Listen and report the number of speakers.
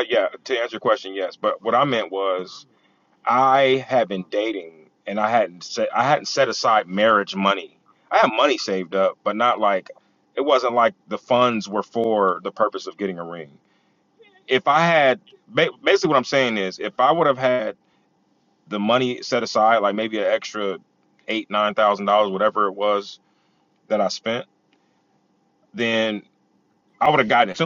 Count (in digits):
1